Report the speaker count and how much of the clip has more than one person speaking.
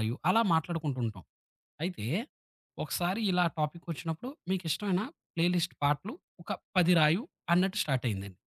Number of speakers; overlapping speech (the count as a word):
one, no overlap